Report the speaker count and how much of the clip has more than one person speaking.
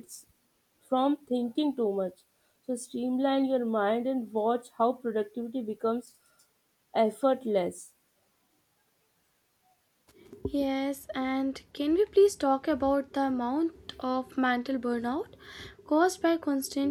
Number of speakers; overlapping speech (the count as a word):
two, no overlap